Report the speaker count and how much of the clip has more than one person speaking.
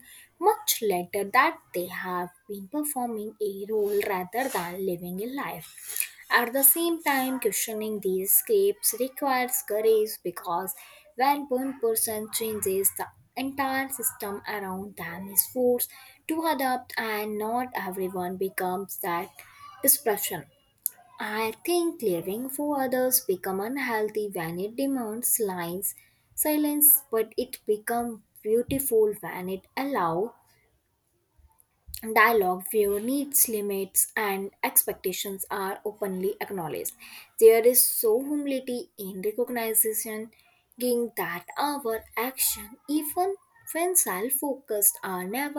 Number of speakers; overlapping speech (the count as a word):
one, no overlap